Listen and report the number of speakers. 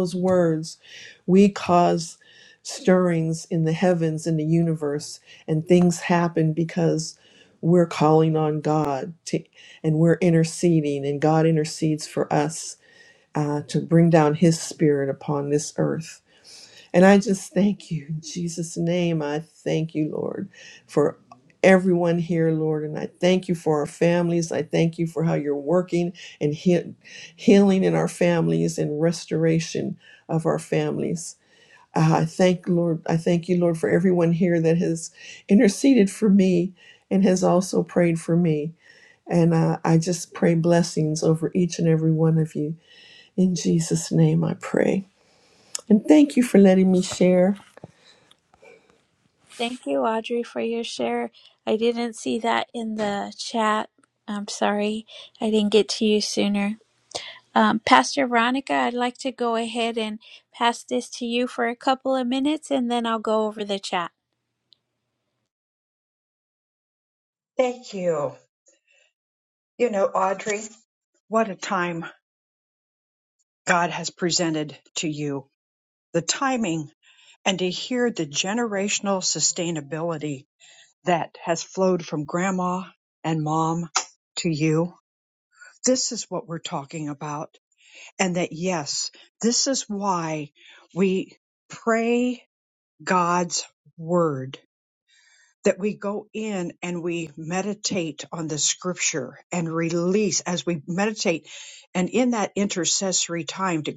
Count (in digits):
3